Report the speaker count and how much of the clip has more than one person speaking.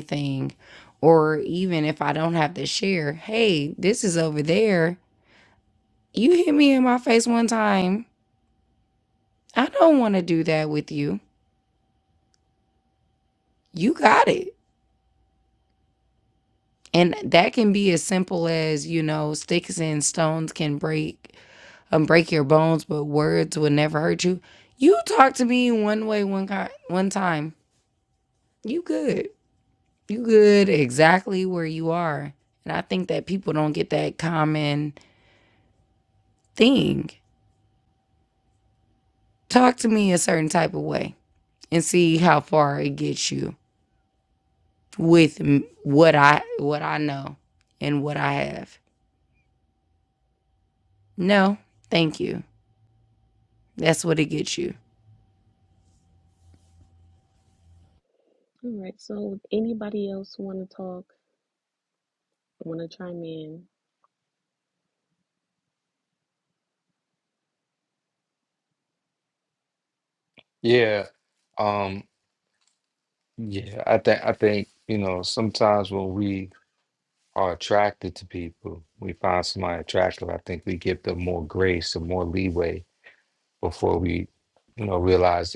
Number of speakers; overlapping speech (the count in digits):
3, no overlap